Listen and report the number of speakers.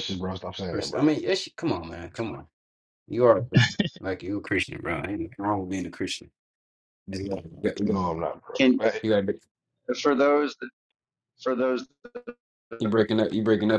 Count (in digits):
3